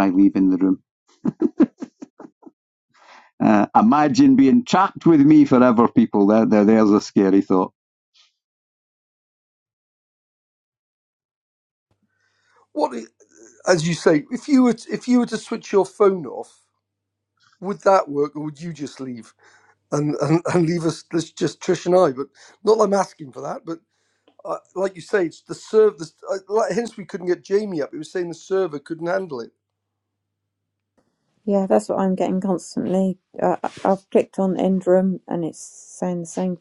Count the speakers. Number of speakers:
three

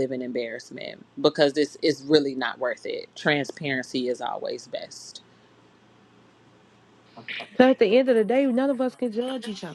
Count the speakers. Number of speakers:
two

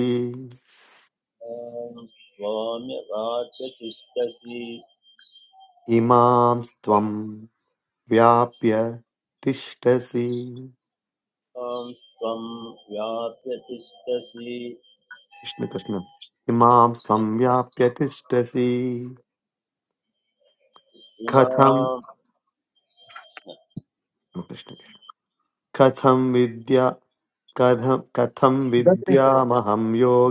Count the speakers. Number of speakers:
two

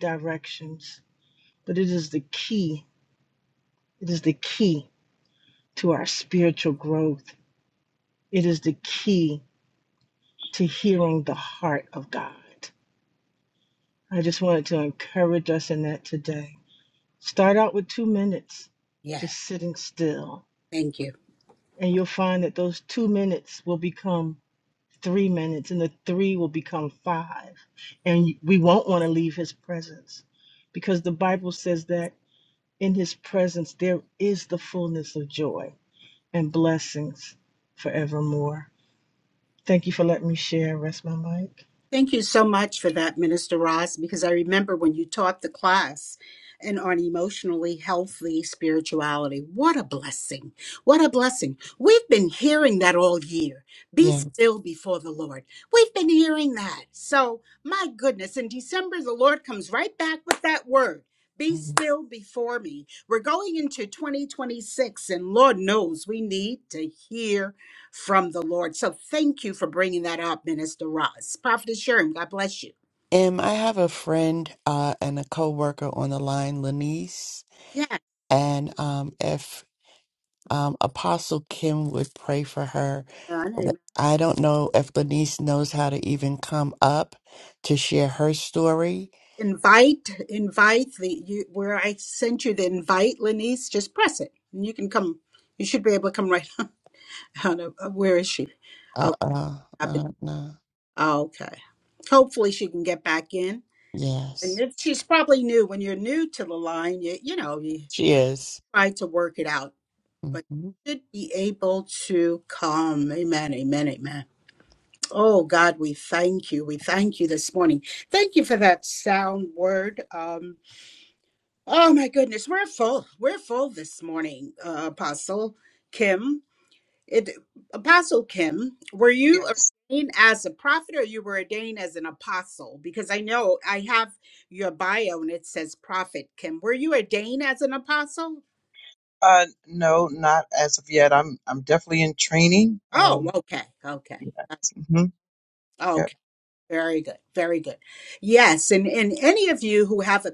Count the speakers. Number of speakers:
four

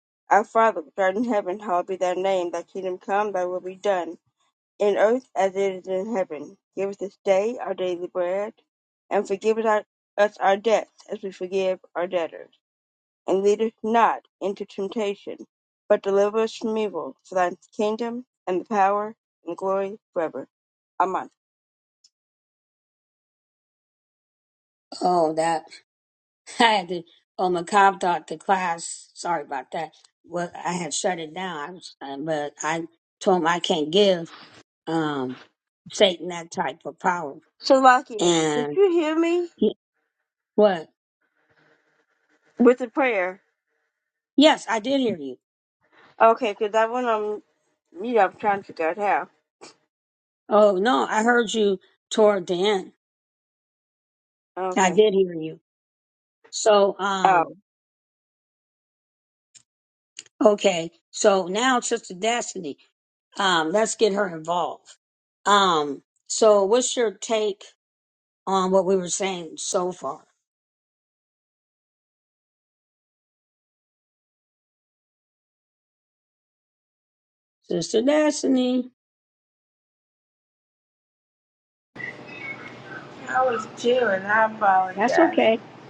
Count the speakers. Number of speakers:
three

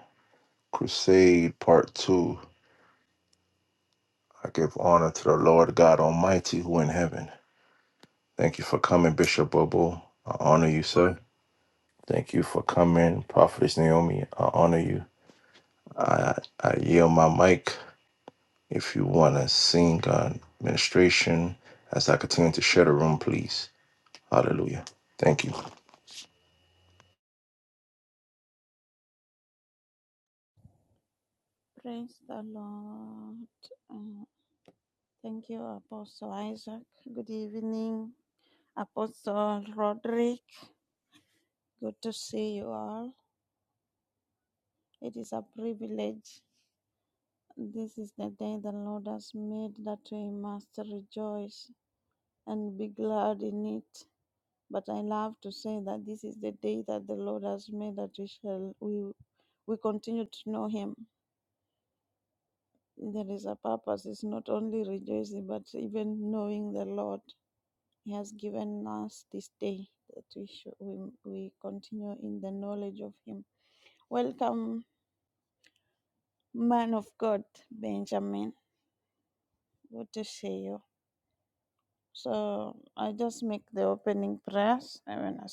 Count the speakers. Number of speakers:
two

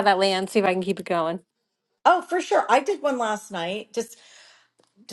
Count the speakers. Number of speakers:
two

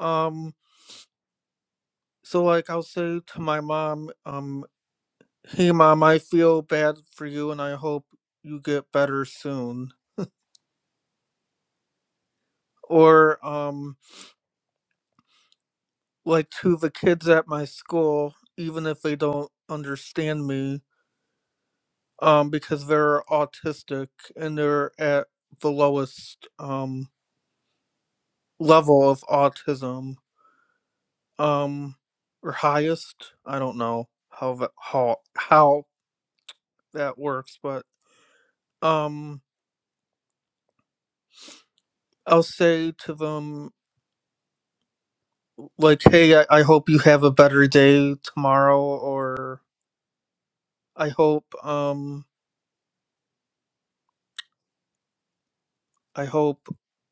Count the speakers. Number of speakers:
one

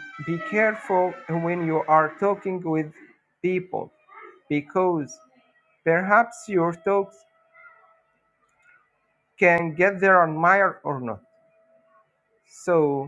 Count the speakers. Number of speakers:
one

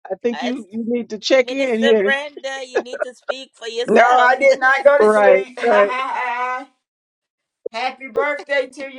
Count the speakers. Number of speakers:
three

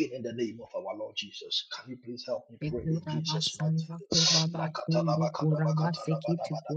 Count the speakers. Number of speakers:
two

